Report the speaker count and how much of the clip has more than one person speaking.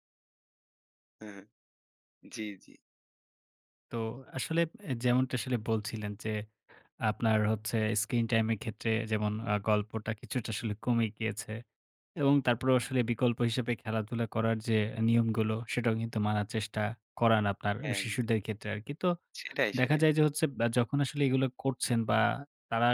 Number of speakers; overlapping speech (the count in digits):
2, about 3%